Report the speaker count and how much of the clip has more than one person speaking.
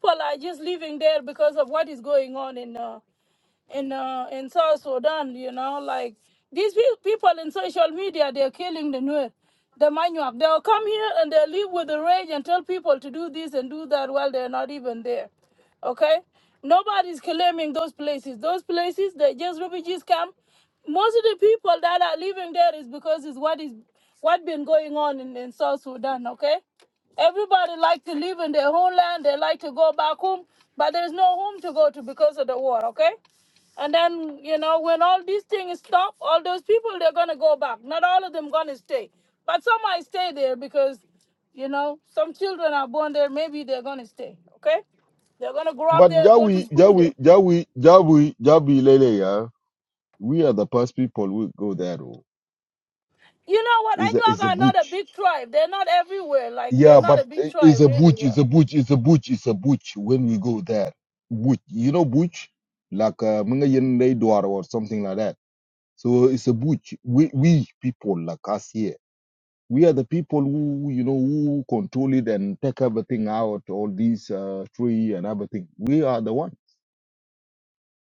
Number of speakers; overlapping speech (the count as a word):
two, about 5%